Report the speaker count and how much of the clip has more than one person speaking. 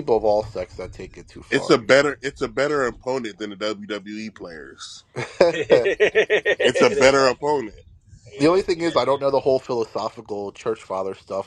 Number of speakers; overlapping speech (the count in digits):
3, about 13%